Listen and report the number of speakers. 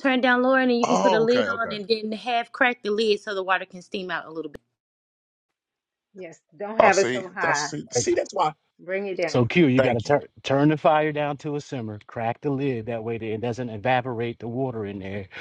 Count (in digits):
4